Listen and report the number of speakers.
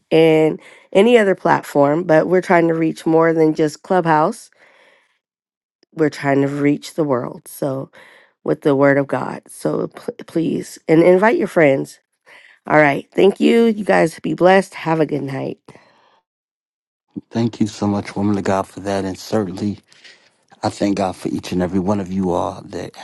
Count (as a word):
two